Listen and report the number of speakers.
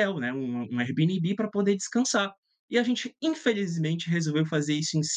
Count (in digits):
1